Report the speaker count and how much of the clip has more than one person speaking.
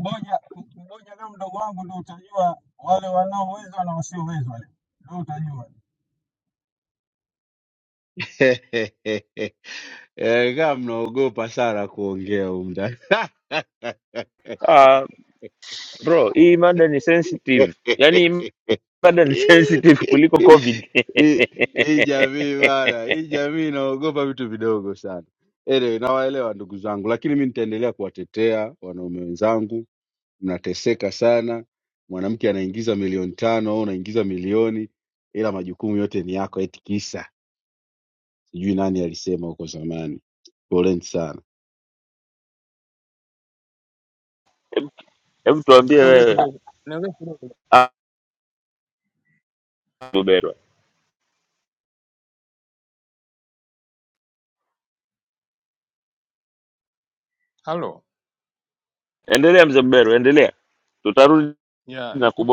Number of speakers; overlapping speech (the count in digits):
4, about 2%